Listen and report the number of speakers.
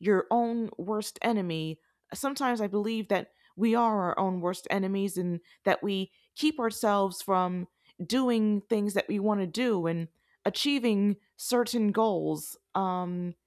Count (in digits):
1